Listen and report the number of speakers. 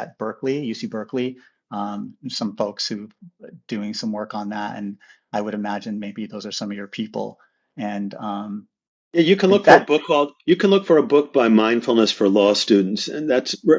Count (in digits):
2